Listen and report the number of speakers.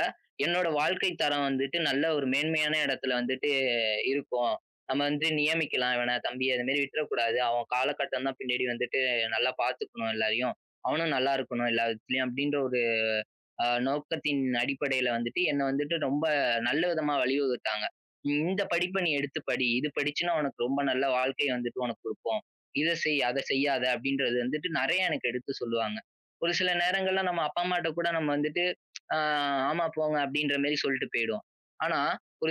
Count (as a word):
one